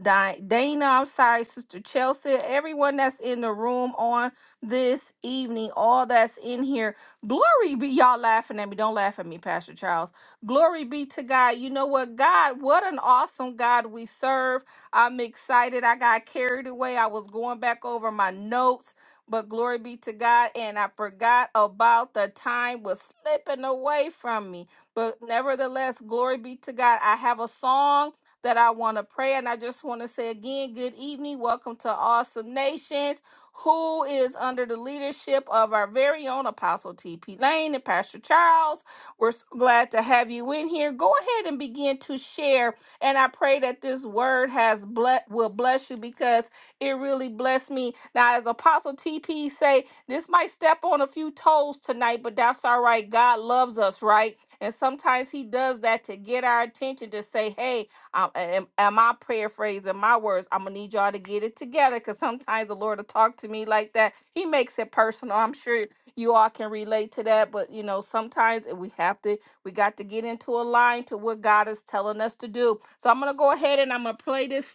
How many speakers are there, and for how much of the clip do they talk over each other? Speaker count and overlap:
1, no overlap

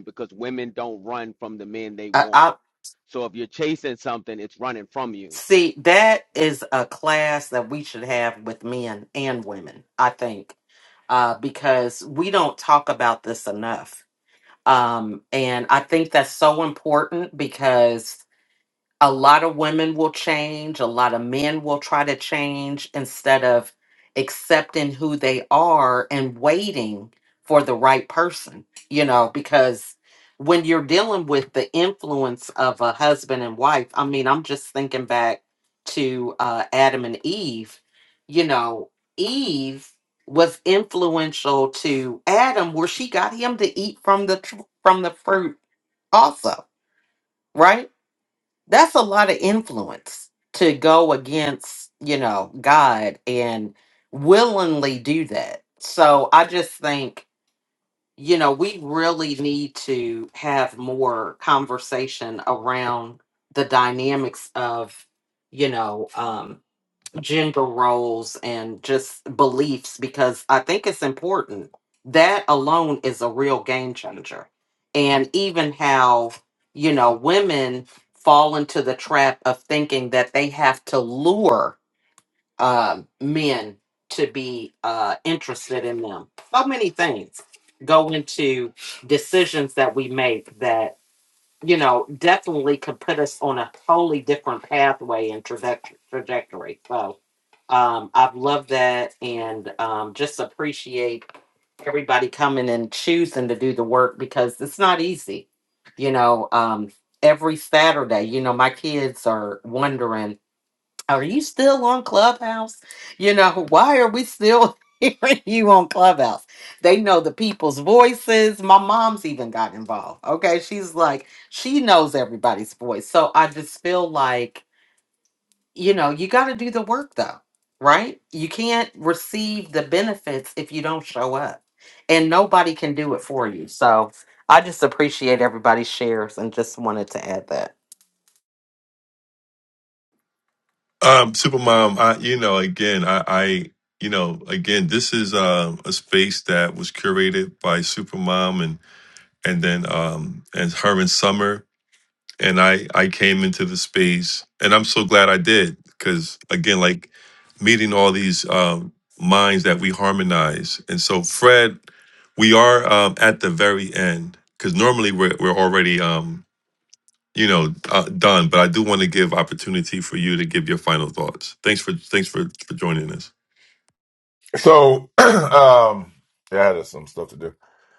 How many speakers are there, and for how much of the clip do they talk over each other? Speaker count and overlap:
4, under 1%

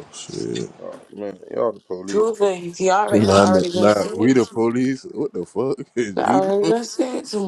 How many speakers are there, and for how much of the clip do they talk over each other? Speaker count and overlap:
3, about 31%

